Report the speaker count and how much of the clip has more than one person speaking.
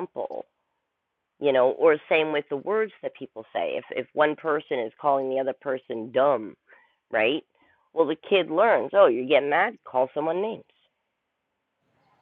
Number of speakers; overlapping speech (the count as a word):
one, no overlap